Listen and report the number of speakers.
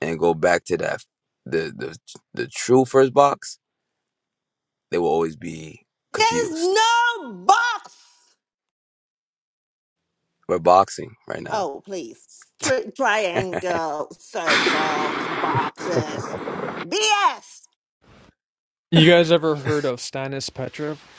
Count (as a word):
three